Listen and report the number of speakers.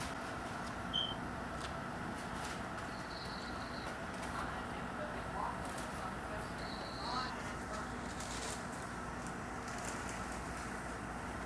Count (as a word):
zero